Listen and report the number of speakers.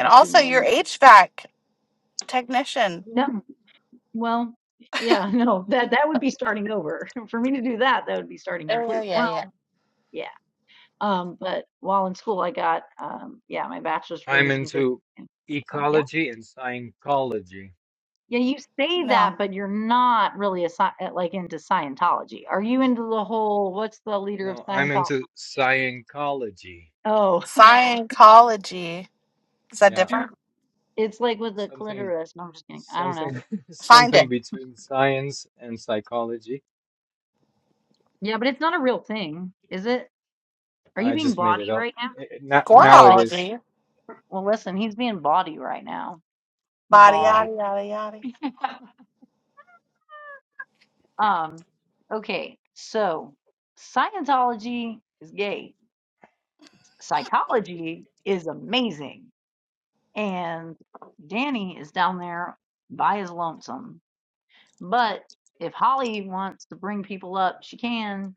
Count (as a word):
three